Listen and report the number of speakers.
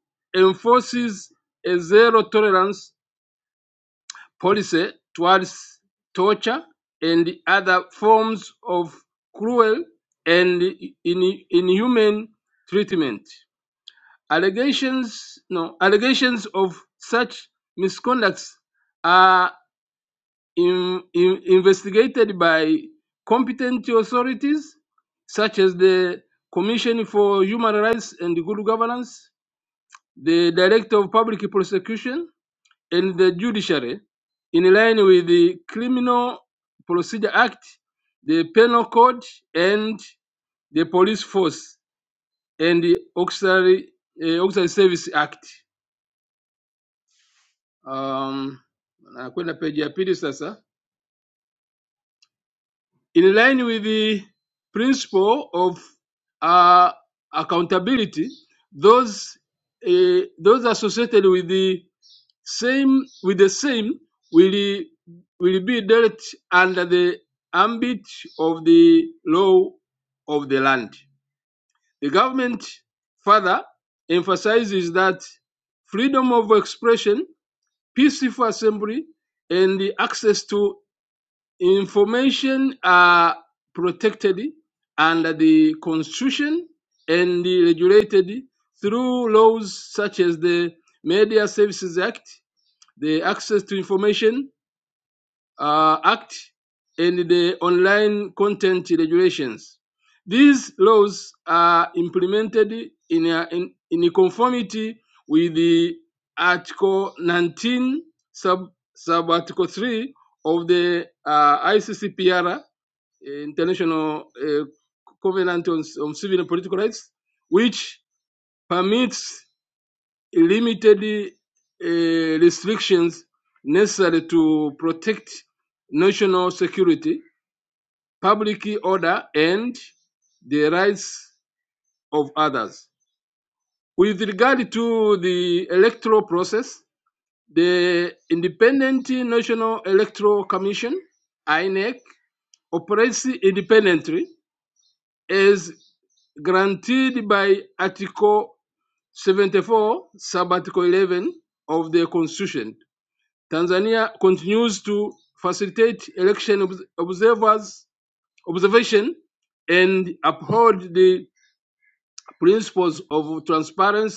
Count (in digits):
1